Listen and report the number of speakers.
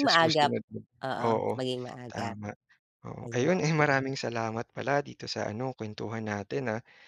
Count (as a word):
two